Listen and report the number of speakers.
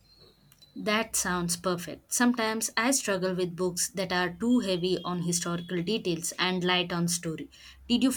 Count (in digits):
1